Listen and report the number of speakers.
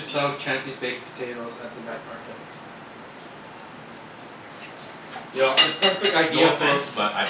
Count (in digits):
2